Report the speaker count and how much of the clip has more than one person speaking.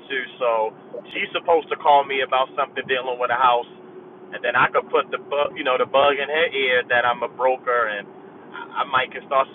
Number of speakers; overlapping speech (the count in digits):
1, no overlap